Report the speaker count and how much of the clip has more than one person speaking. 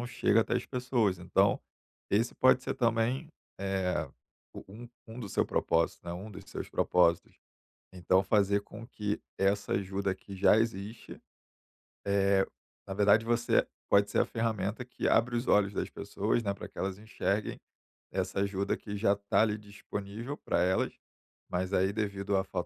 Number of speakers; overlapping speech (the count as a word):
one, no overlap